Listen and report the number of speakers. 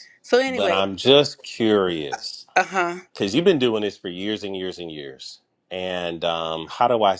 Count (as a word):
two